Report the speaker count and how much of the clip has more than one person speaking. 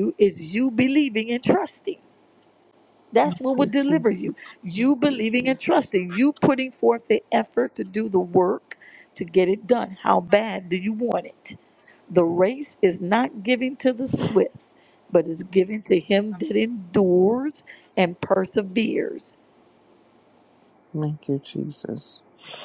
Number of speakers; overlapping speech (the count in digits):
2, about 2%